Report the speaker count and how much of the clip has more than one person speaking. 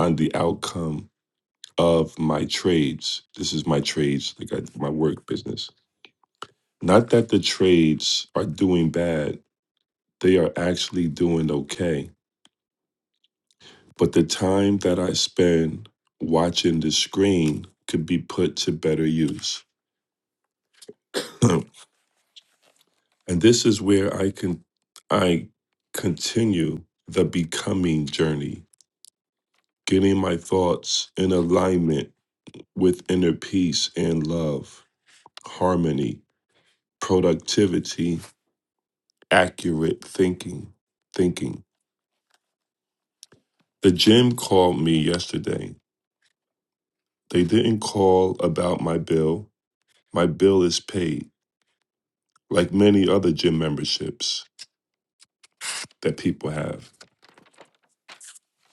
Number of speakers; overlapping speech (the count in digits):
1, no overlap